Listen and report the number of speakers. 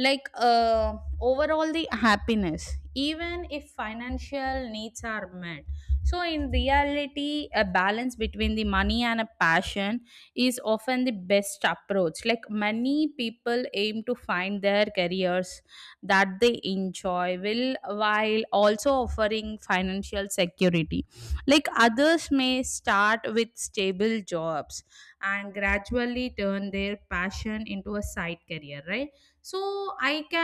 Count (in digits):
1